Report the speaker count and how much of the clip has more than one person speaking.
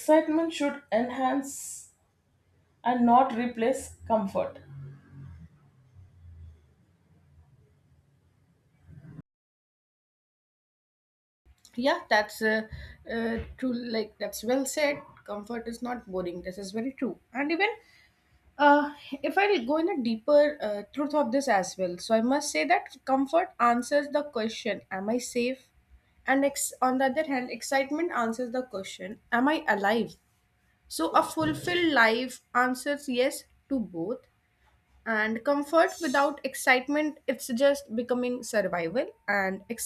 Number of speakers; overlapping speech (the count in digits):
2, no overlap